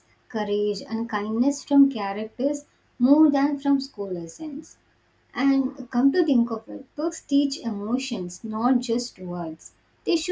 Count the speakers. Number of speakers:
1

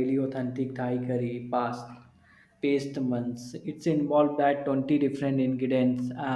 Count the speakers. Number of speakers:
1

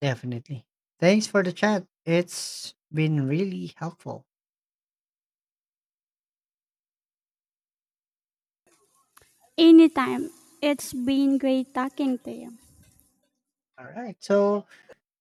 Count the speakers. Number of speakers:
2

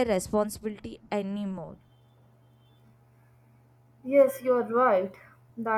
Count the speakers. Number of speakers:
2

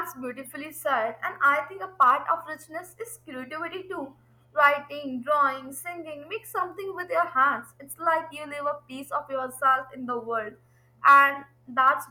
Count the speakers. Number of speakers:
1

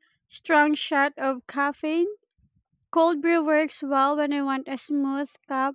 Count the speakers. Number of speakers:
1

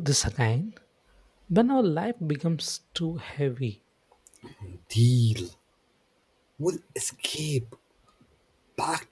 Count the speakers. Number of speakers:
2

